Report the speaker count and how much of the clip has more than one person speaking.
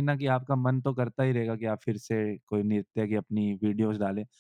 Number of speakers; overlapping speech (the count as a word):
one, no overlap